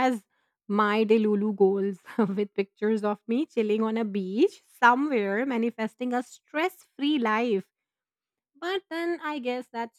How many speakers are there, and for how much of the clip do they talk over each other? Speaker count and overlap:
one, no overlap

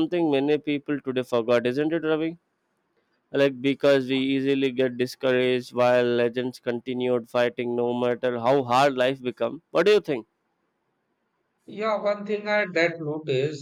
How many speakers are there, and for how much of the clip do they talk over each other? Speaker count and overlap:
two, no overlap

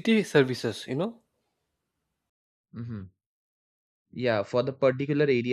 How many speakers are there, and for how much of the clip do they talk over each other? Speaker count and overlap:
two, no overlap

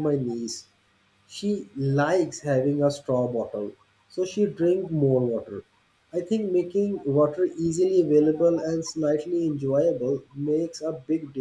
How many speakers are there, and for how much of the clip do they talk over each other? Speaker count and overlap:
one, no overlap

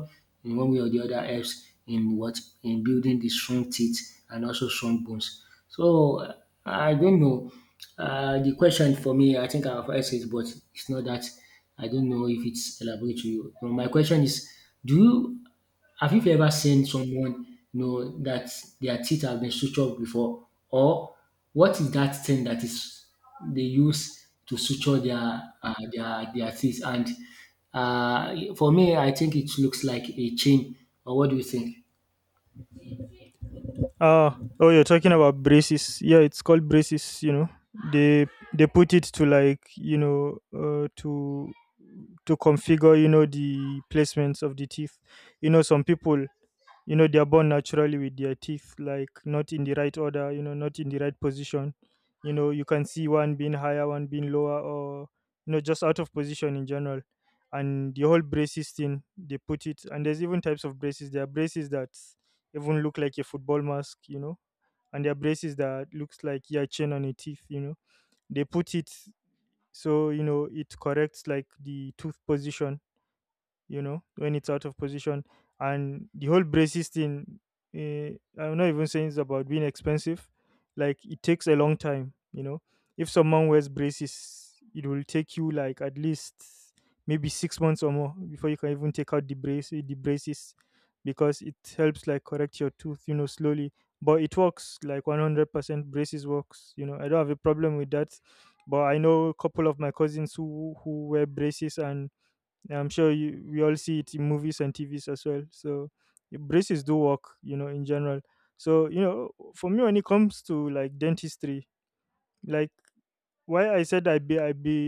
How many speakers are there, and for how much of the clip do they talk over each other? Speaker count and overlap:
two, no overlap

